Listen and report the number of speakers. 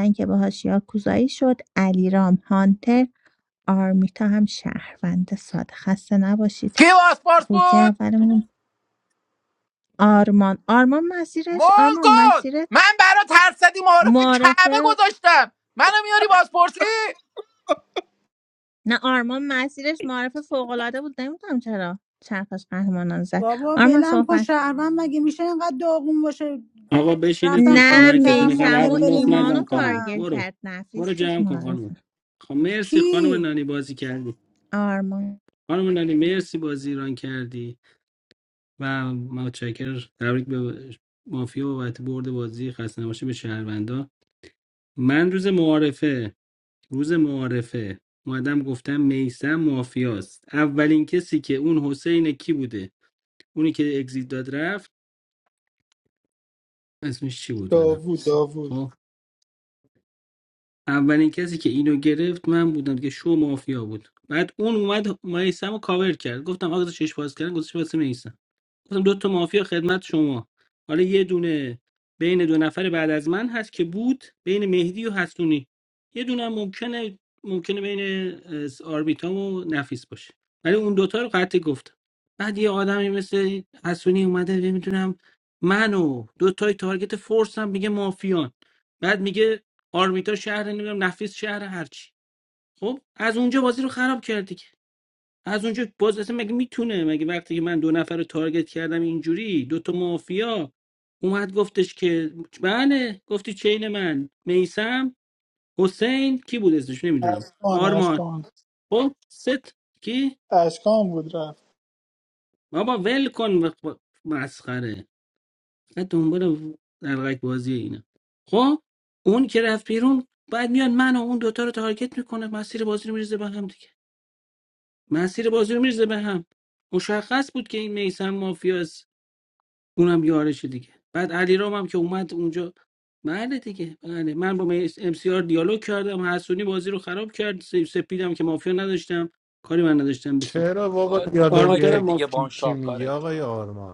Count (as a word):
six